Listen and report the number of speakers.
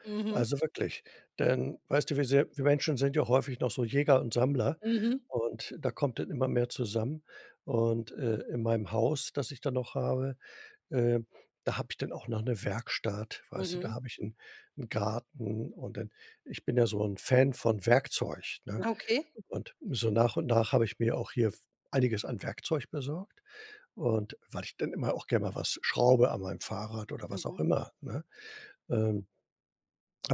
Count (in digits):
2